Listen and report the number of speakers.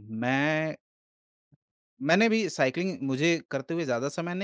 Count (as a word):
one